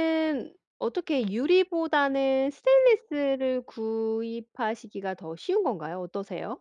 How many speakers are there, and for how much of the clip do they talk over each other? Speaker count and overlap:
one, no overlap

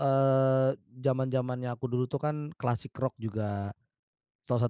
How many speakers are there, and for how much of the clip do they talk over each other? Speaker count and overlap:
one, no overlap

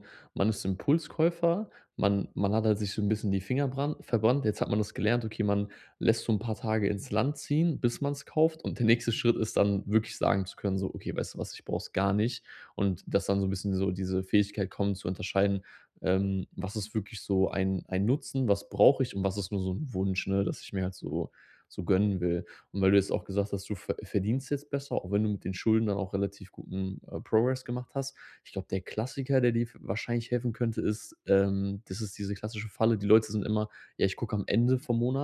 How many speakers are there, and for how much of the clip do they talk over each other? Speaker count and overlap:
one, no overlap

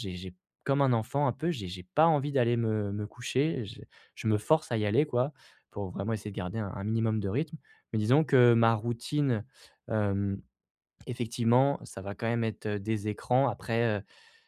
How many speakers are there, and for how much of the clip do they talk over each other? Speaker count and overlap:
one, no overlap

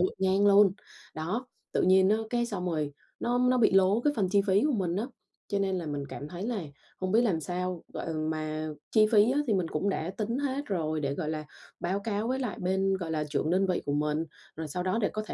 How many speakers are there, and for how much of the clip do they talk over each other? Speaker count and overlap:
one, no overlap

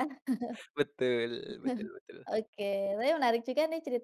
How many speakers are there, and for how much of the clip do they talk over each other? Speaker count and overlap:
two, no overlap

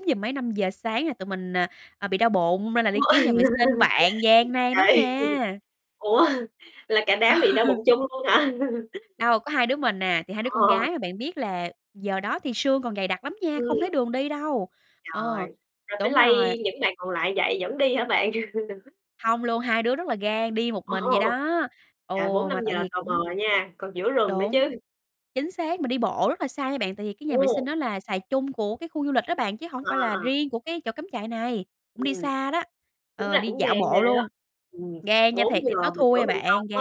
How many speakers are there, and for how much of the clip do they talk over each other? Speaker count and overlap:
two, about 22%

